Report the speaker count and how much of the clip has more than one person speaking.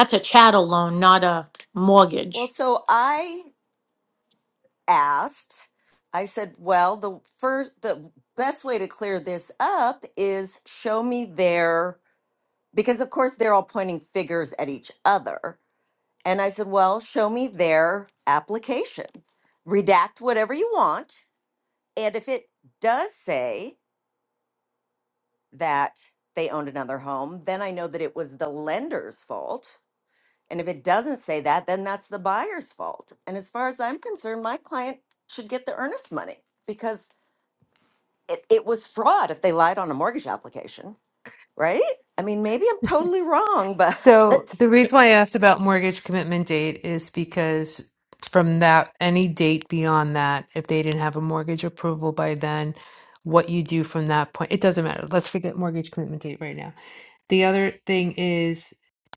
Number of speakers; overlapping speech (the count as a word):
three, about 1%